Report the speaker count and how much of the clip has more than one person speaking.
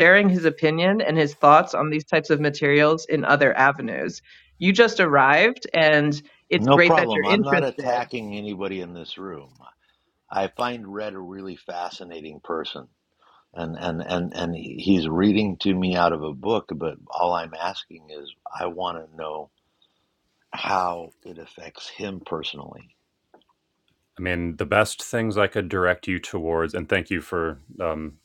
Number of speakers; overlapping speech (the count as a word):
three, about 5%